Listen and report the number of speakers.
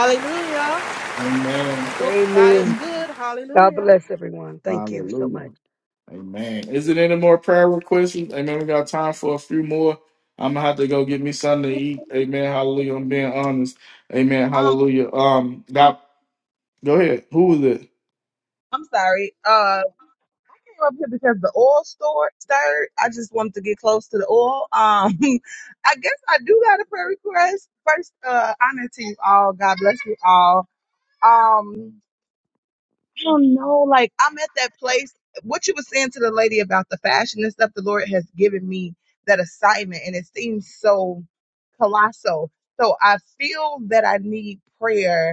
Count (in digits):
4